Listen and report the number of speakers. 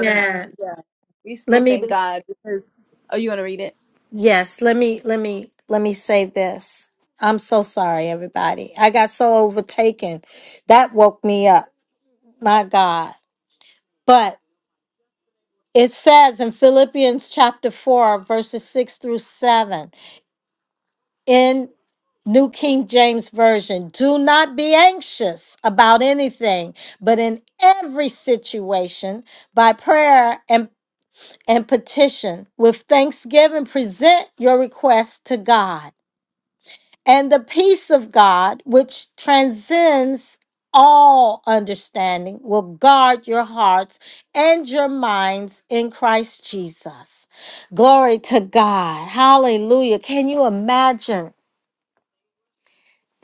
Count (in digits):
2